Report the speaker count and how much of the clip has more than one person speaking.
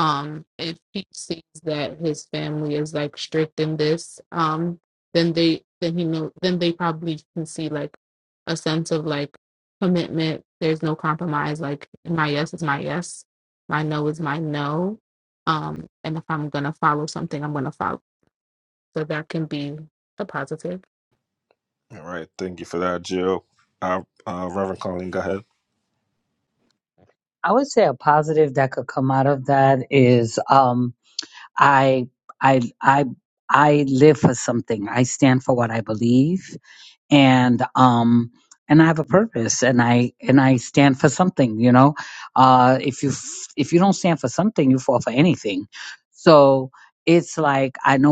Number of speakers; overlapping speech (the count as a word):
three, no overlap